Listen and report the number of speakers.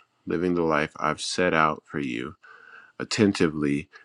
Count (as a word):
one